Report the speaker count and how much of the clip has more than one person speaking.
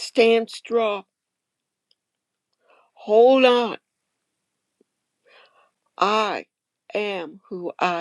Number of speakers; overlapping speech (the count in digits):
1, no overlap